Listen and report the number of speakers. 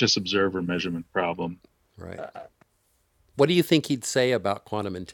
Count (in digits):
2